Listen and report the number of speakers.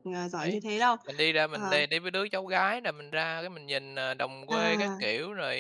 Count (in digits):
2